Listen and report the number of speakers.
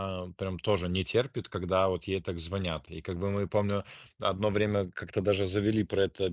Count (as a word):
one